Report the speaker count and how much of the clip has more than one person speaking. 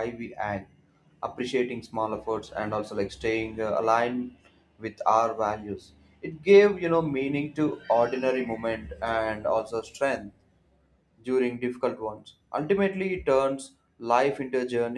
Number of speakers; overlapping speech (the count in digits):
1, no overlap